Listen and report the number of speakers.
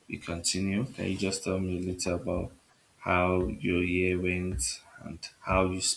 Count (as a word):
one